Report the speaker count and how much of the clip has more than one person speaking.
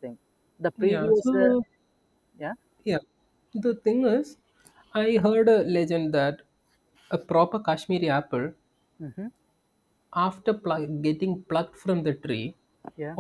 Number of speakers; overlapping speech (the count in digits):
2, about 6%